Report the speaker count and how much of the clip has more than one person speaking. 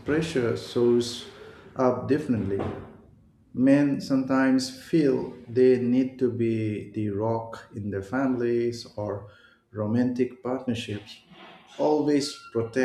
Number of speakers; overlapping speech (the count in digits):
1, no overlap